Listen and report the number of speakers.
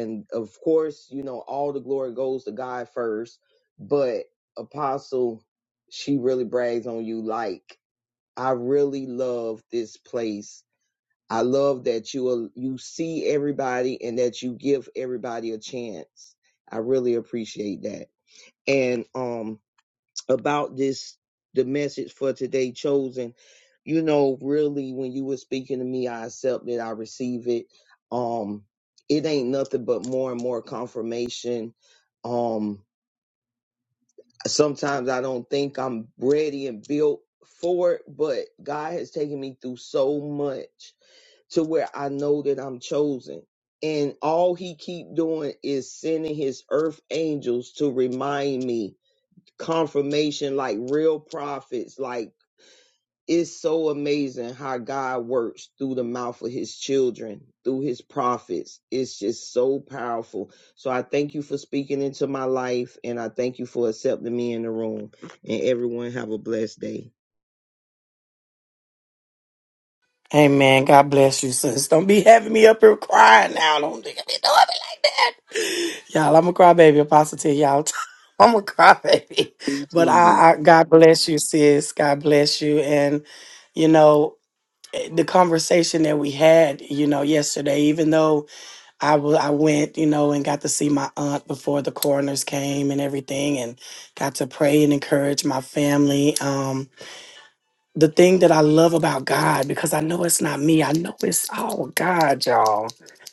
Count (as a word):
two